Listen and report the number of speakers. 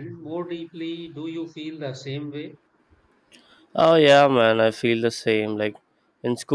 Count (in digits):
2